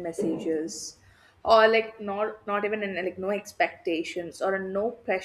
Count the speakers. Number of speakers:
1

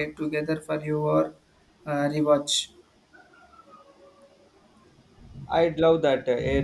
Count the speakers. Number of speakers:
2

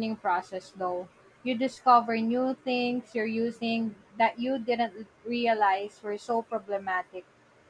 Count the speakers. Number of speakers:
1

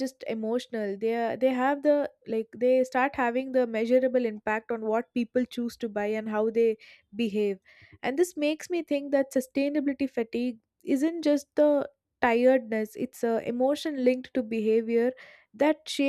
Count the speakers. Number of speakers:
1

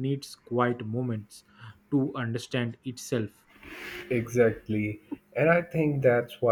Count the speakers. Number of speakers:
2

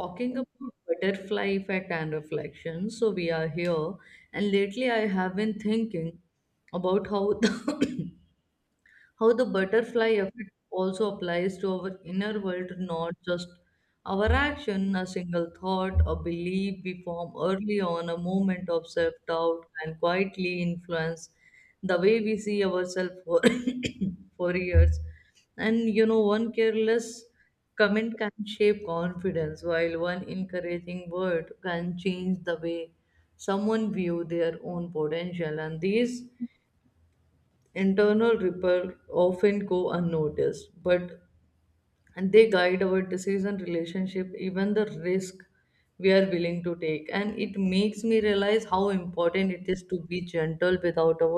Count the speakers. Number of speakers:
1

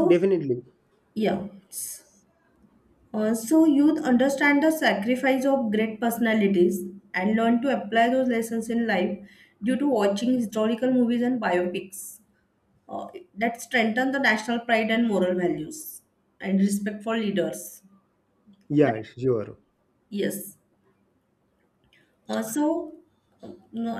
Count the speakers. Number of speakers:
2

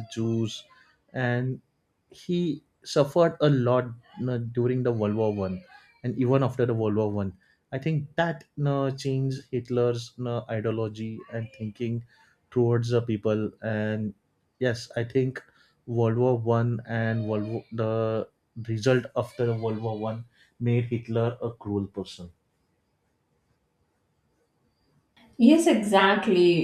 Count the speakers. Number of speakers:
2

